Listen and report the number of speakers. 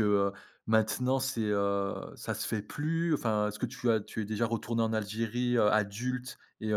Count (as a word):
one